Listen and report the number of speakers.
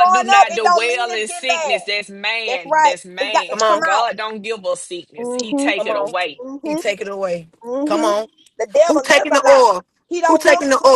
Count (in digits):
3